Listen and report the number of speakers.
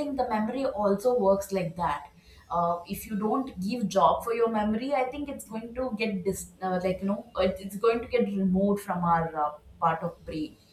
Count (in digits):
1